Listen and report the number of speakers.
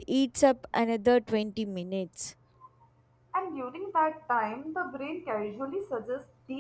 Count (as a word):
two